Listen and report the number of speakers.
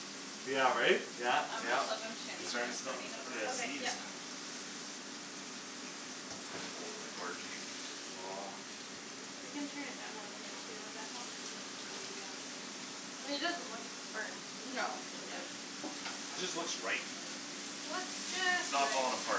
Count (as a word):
four